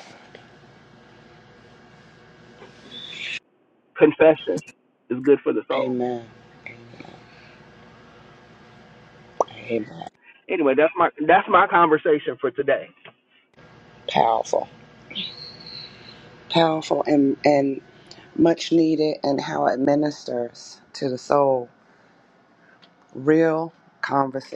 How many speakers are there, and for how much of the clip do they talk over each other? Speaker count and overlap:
two, about 1%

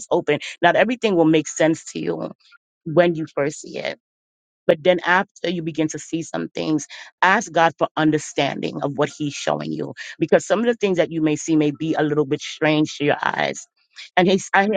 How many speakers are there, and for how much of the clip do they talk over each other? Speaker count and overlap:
one, no overlap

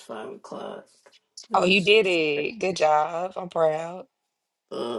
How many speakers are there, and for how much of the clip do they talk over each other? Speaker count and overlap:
two, about 3%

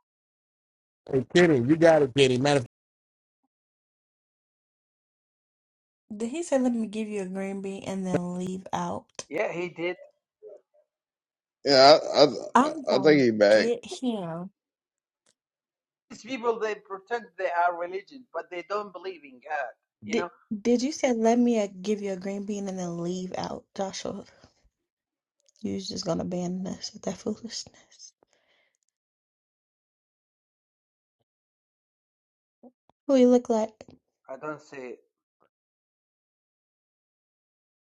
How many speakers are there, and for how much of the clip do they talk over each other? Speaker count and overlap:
four, about 3%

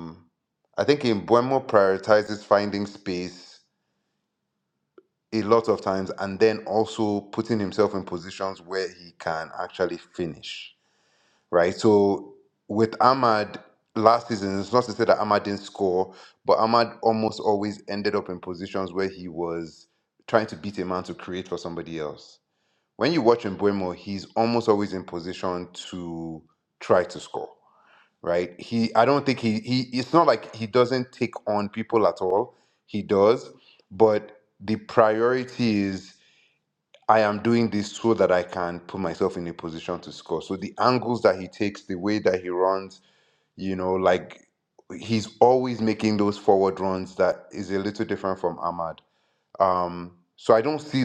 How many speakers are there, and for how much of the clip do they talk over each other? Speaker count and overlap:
one, no overlap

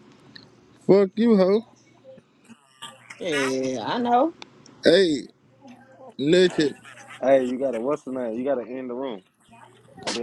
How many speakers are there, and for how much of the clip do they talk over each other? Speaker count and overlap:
three, no overlap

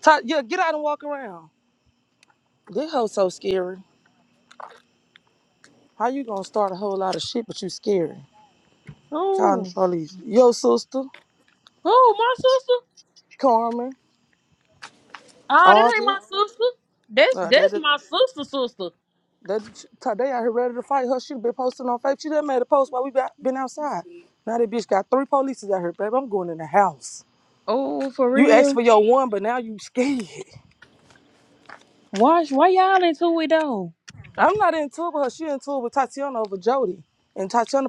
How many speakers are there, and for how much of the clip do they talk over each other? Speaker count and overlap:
two, about 5%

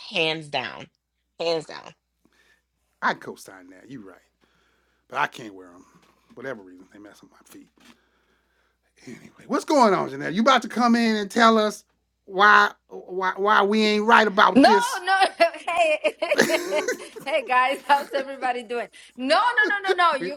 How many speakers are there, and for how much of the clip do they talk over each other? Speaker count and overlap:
three, about 3%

